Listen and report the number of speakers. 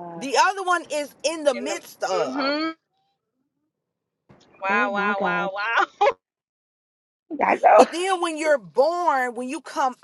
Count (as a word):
three